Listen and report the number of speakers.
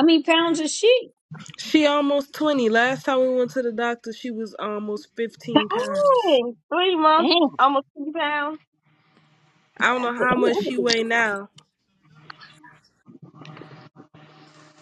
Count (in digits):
3